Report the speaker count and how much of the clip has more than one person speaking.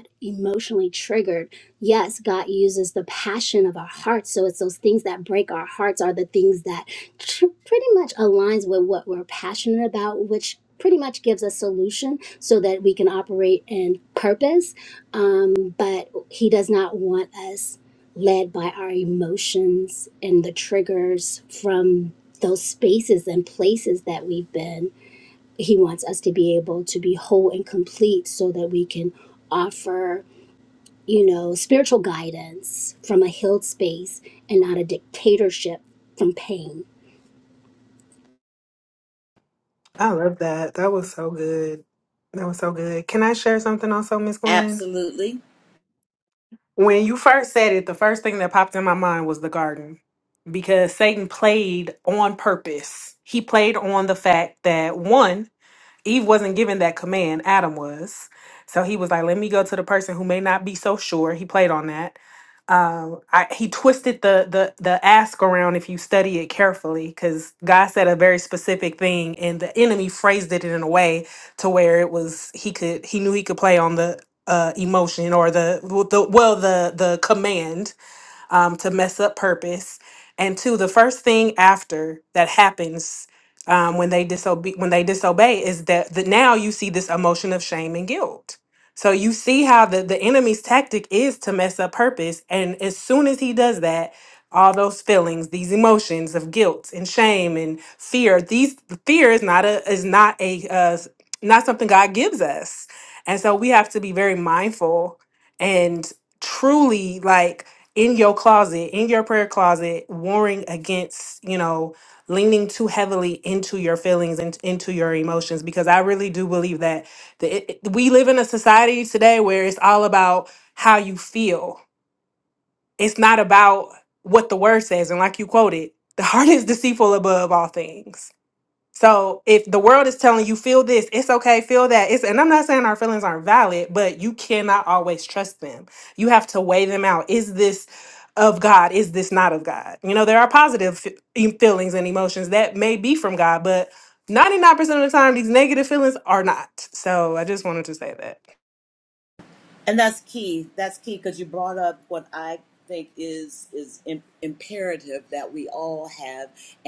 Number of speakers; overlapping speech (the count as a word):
three, under 1%